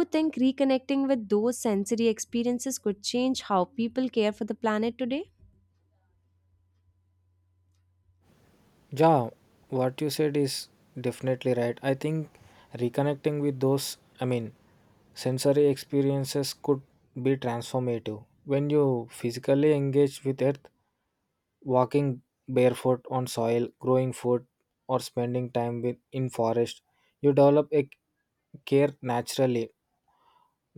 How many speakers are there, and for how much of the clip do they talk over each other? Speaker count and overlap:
2, no overlap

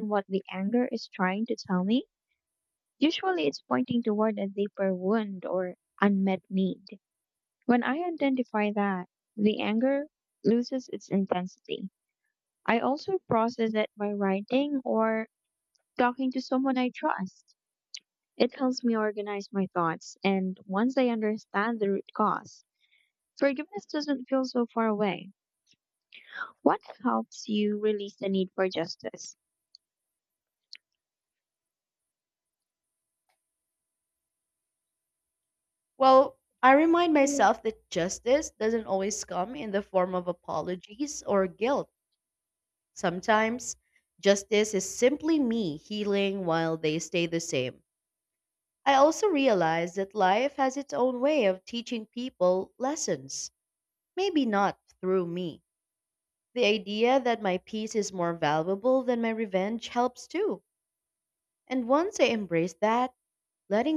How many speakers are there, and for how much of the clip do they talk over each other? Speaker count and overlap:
2, no overlap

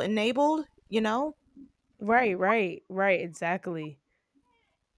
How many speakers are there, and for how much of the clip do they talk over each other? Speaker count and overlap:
2, no overlap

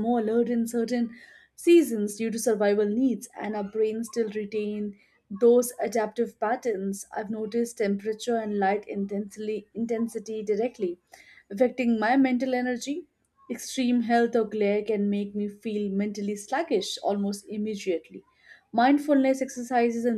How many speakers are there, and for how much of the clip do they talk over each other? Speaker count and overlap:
1, no overlap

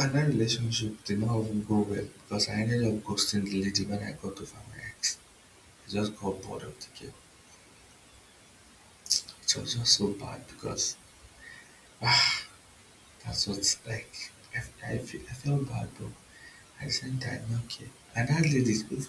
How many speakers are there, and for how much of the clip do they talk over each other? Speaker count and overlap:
1, no overlap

